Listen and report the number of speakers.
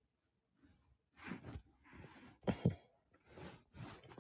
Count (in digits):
0